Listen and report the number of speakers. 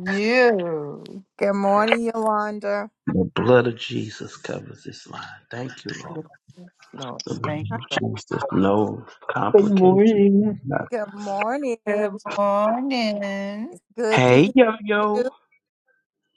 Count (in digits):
4